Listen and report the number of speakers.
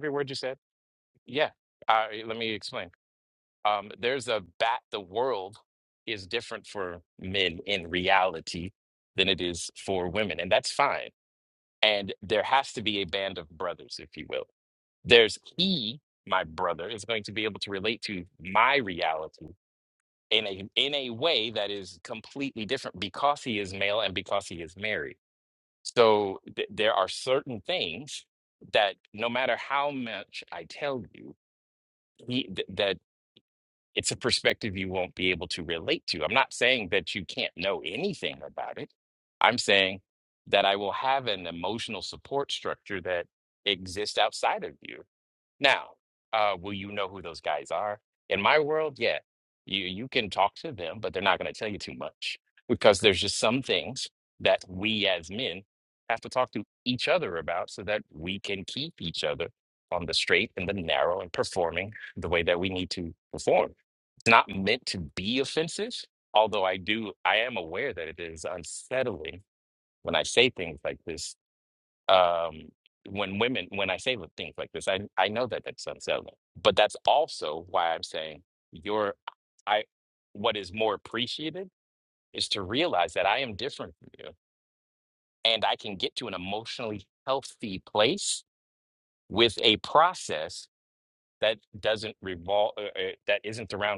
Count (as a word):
one